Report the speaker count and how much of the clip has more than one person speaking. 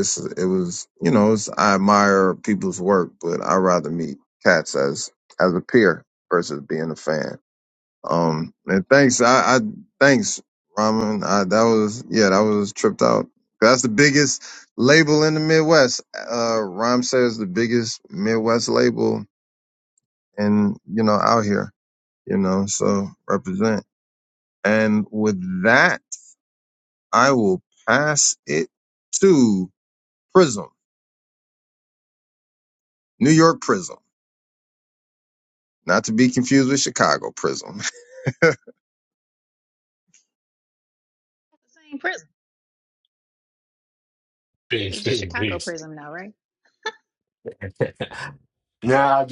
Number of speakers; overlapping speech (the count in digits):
3, about 2%